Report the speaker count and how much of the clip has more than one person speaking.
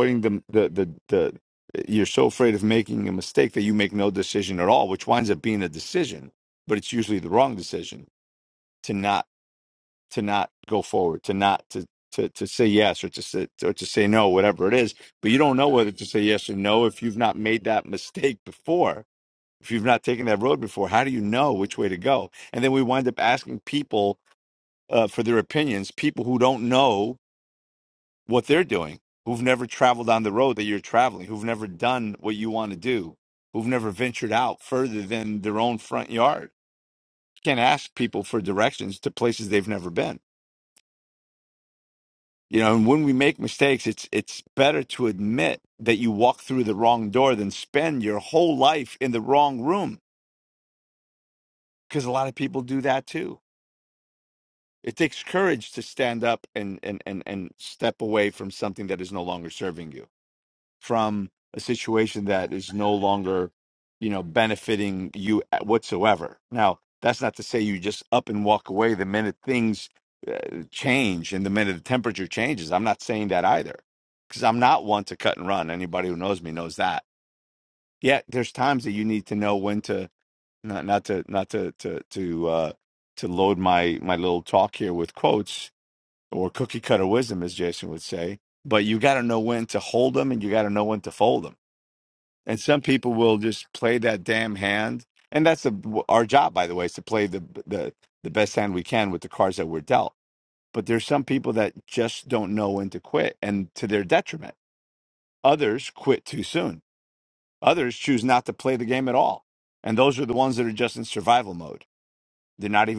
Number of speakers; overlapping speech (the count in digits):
1, no overlap